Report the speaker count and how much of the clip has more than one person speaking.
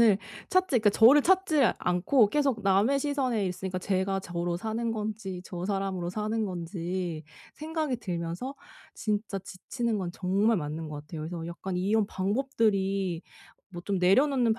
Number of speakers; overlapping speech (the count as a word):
one, no overlap